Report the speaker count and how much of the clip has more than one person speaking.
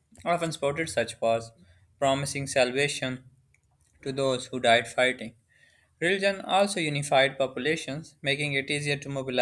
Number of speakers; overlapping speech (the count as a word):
one, no overlap